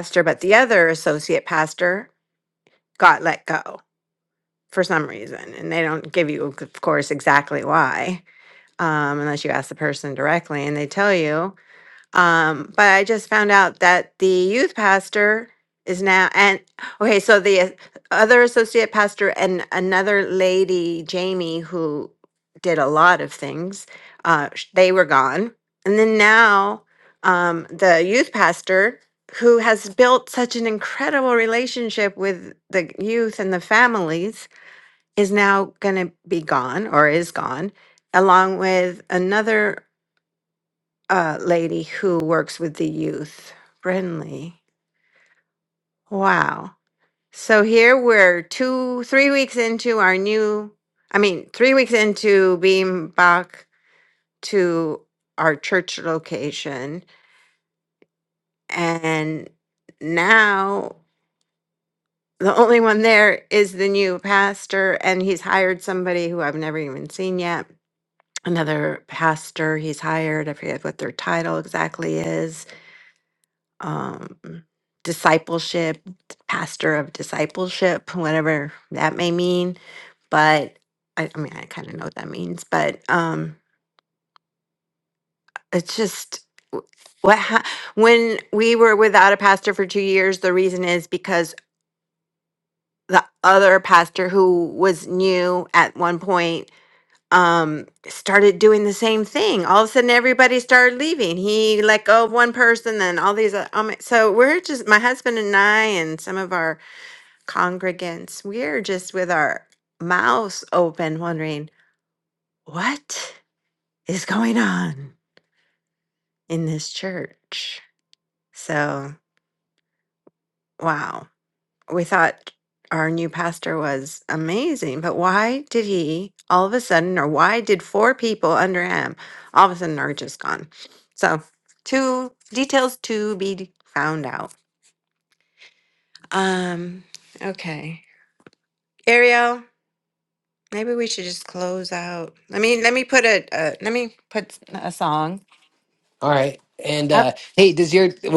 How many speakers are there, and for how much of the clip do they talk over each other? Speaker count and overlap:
two, under 1%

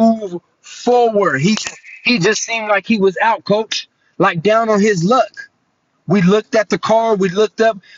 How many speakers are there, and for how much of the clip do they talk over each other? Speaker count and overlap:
one, no overlap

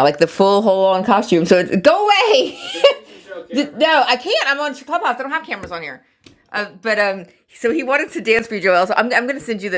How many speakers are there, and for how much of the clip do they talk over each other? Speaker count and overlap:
one, no overlap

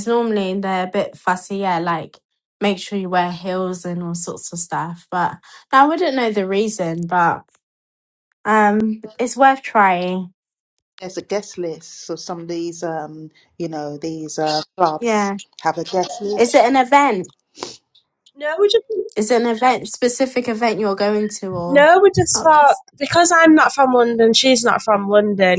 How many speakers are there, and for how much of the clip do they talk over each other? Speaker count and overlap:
three, about 3%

